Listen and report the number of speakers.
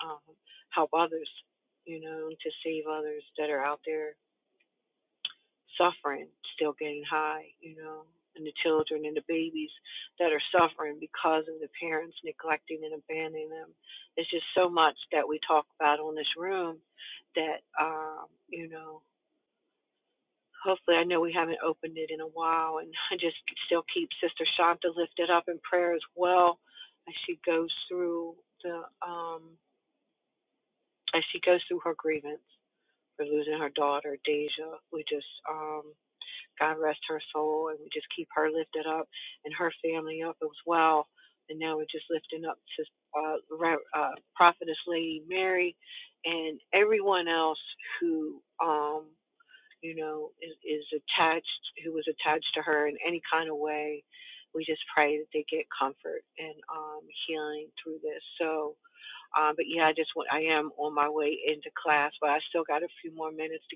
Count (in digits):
1